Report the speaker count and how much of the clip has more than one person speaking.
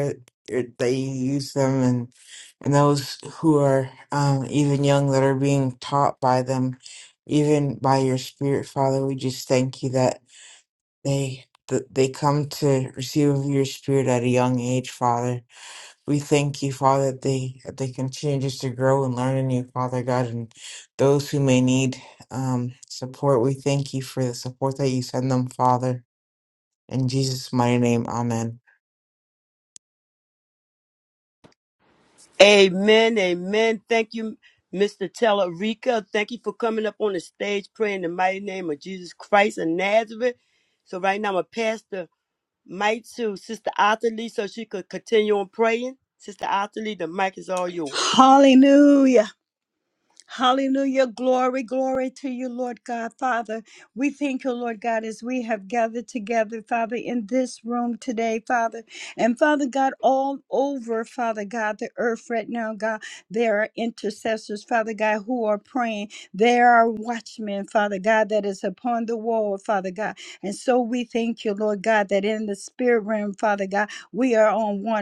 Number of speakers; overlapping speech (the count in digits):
3, no overlap